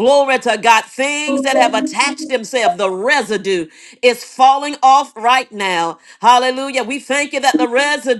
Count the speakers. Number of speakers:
1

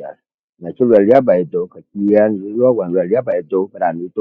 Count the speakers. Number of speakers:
1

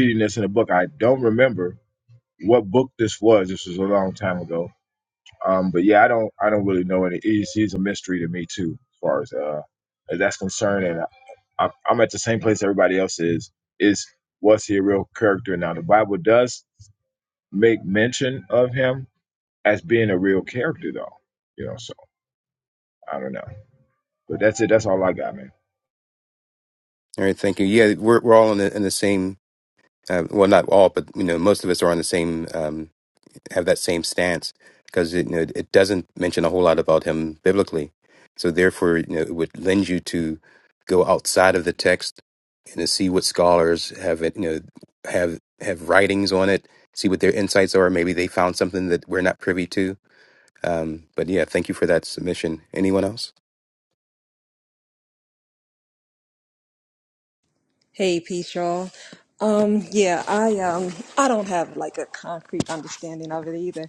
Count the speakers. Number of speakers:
3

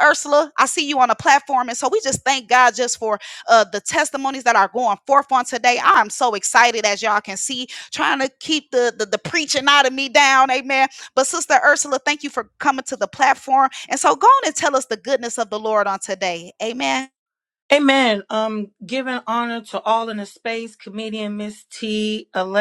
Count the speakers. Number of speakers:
2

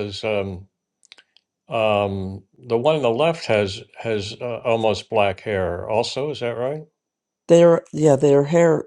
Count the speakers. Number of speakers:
2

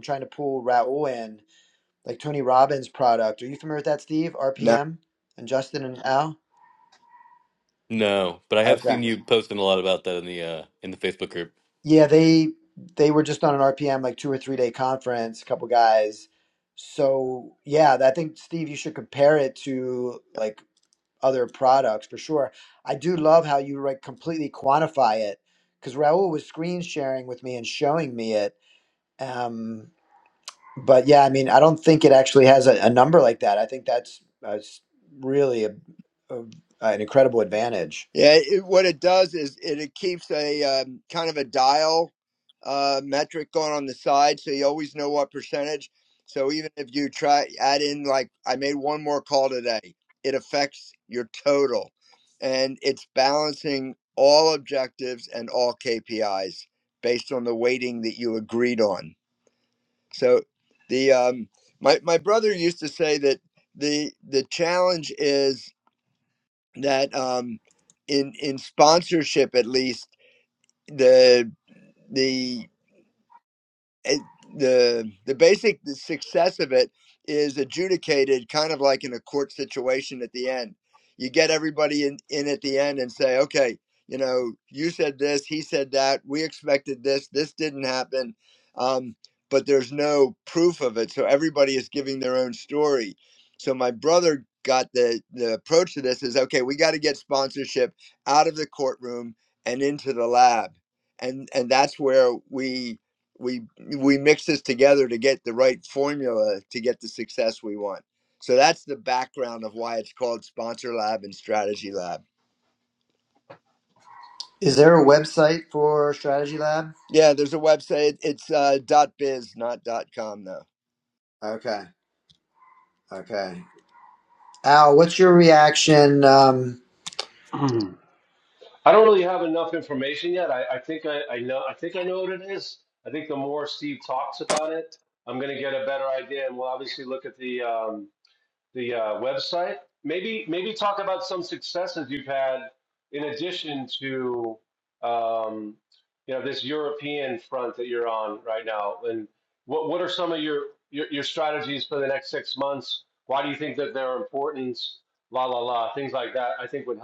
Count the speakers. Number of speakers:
4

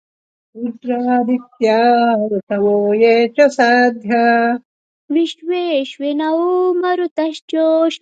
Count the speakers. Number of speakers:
2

